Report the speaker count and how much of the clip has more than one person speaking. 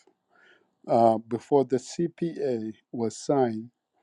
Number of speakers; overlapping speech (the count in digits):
1, no overlap